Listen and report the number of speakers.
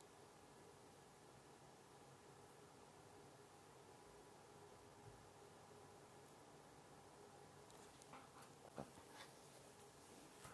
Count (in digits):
0